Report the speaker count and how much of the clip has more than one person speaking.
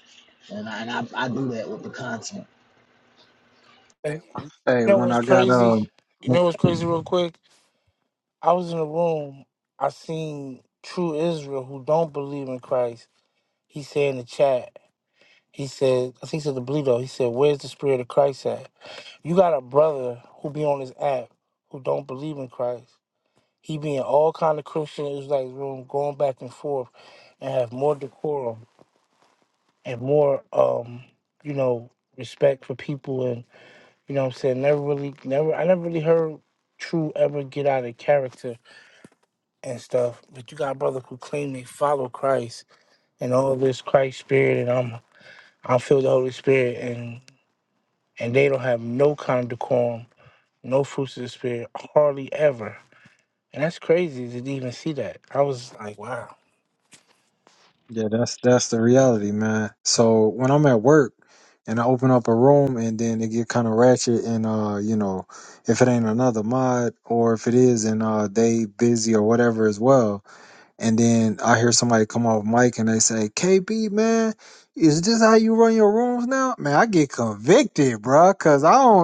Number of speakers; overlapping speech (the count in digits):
3, about 1%